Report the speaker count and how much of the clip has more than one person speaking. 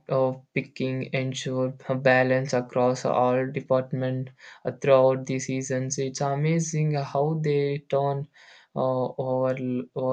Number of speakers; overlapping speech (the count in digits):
1, no overlap